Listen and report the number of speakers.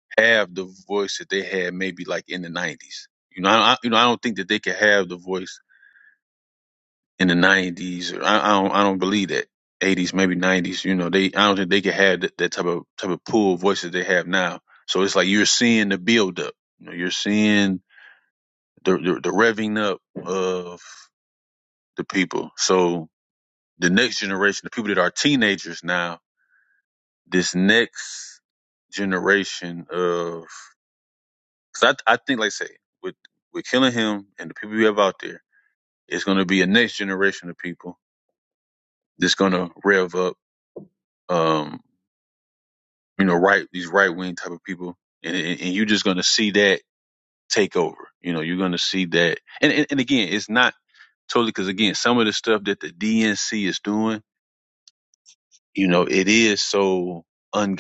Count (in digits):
1